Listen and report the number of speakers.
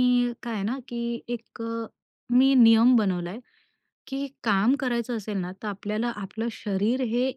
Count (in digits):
1